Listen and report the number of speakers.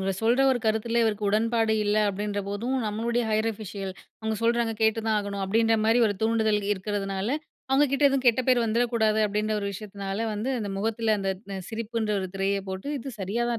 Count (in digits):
1